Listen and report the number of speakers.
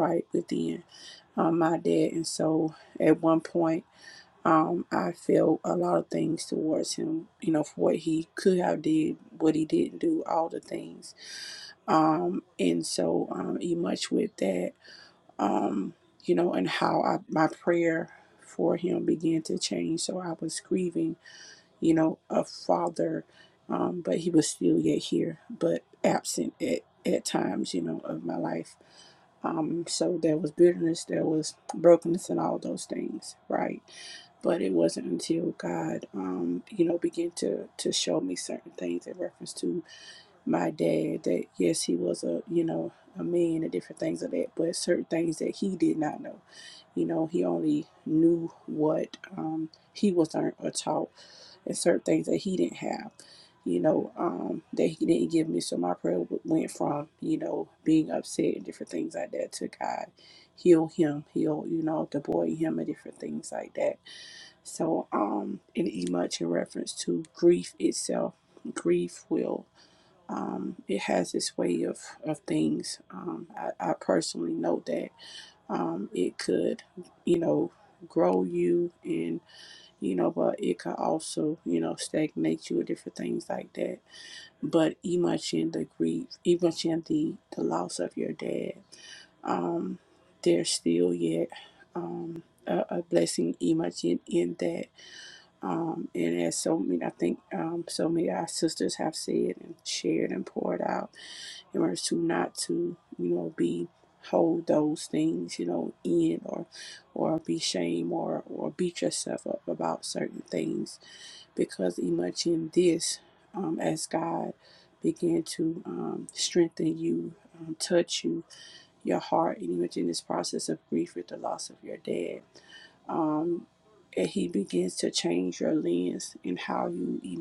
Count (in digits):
1